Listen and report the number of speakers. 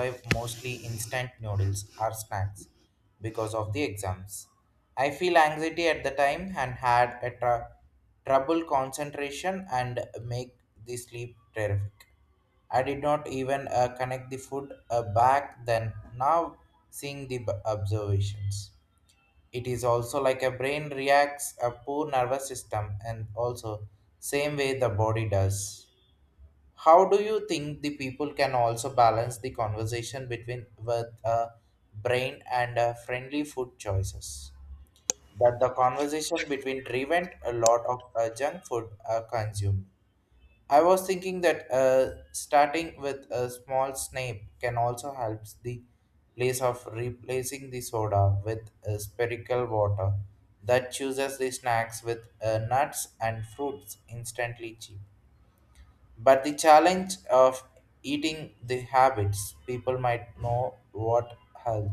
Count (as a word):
one